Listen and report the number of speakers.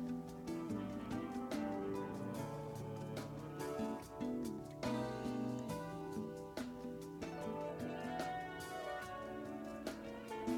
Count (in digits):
0